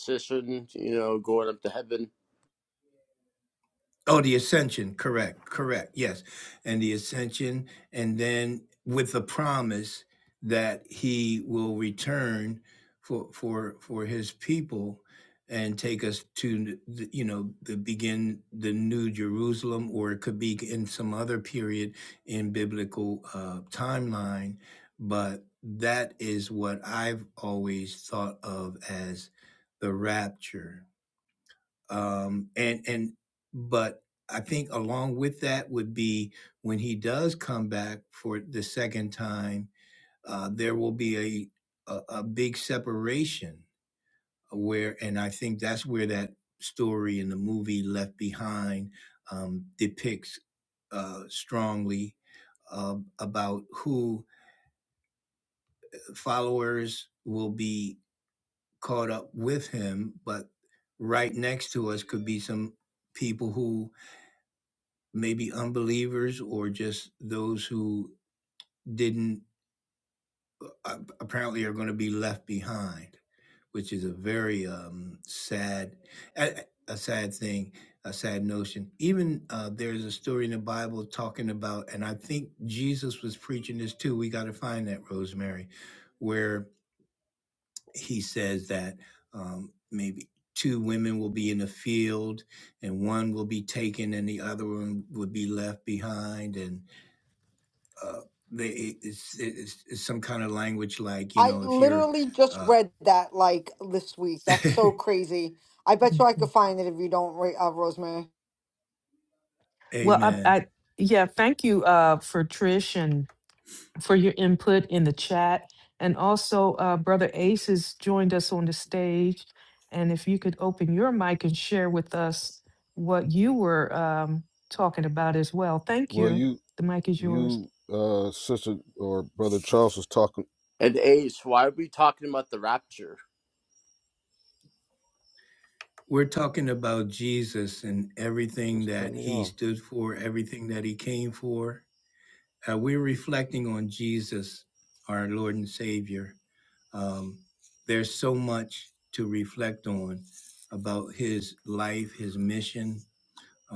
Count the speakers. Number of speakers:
5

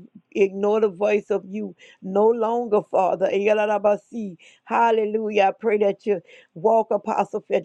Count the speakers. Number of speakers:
1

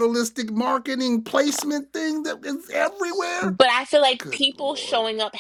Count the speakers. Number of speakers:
2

